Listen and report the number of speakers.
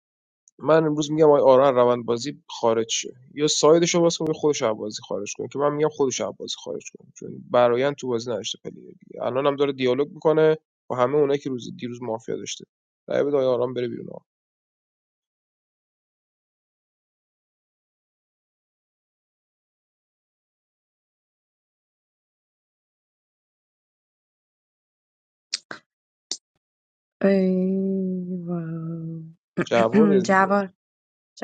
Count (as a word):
two